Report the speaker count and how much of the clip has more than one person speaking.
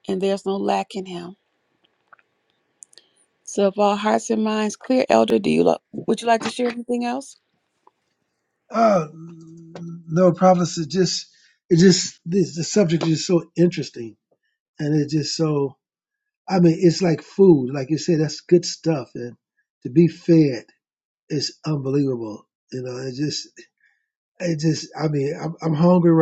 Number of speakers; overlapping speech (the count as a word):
two, no overlap